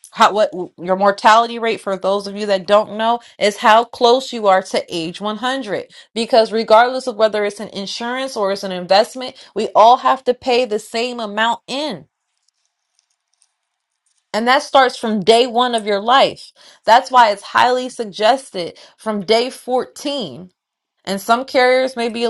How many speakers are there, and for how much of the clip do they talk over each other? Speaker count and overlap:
one, no overlap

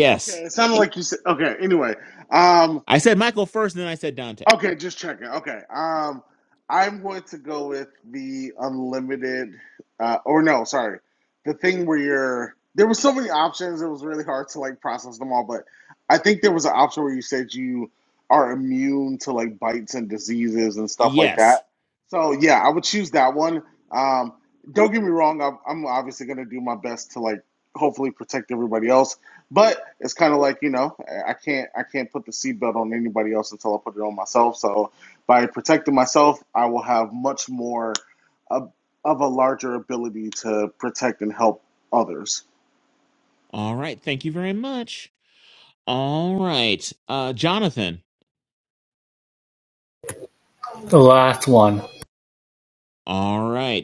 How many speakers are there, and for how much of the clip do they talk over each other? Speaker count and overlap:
three, about 1%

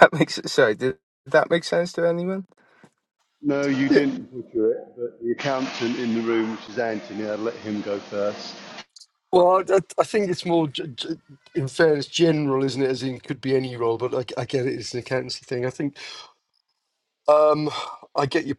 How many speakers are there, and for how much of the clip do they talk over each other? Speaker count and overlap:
three, about 1%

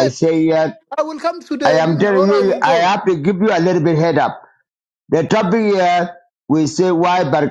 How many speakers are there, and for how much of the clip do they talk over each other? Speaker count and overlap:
two, about 18%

